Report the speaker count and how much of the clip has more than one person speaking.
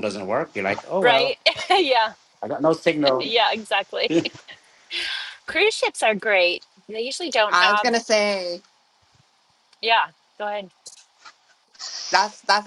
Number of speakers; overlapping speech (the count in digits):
3, about 5%